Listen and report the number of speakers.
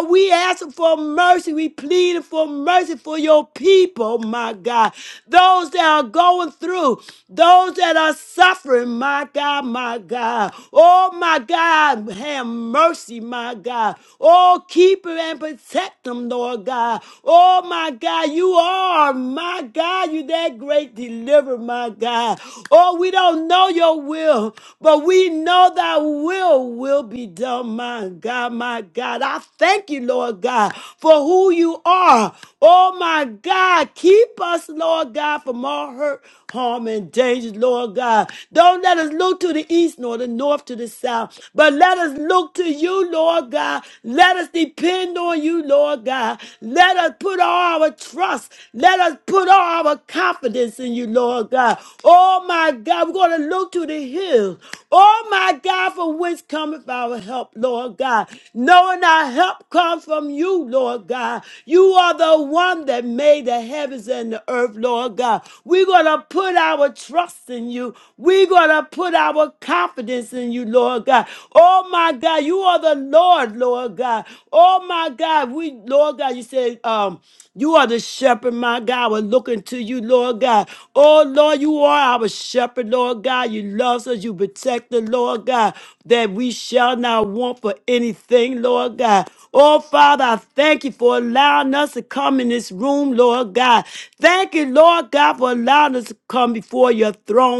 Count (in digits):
1